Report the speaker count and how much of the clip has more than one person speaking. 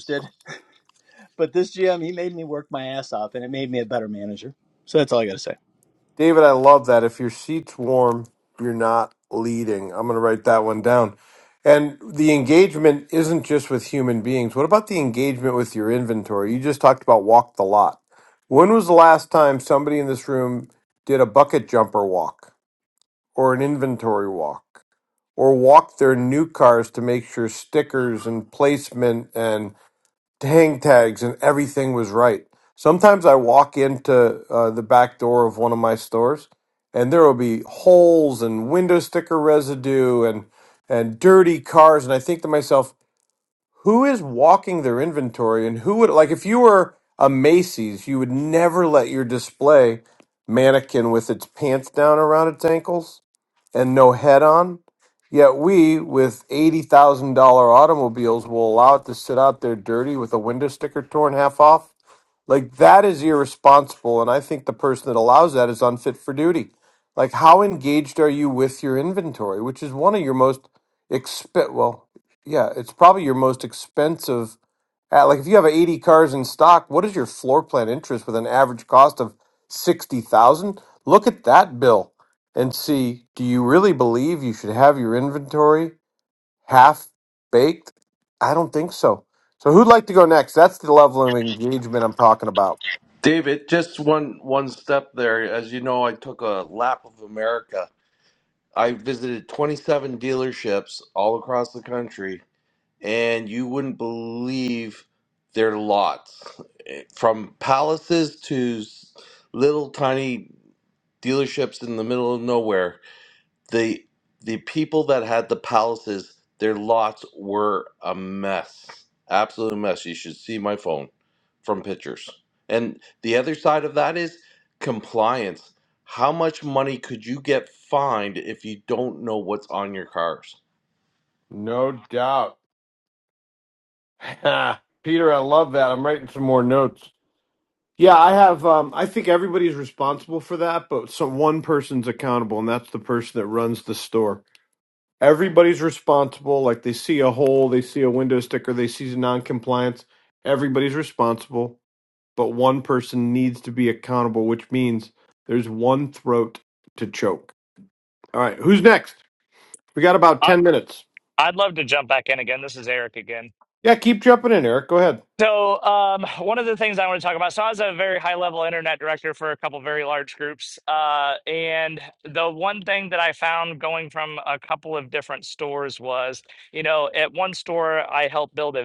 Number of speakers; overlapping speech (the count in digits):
4, under 1%